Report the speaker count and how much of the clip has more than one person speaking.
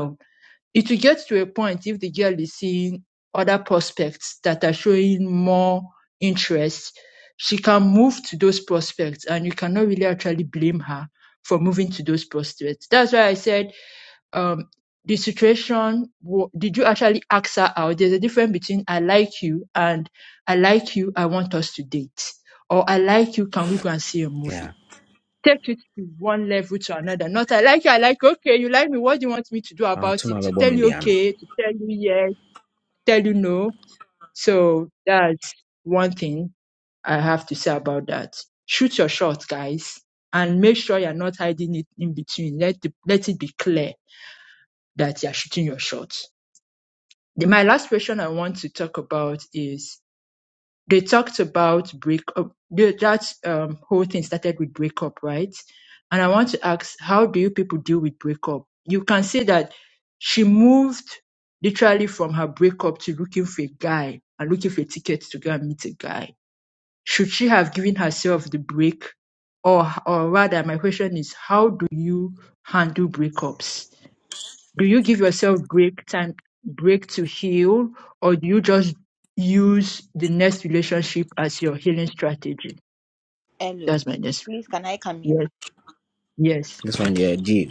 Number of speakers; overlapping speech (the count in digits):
3, about 2%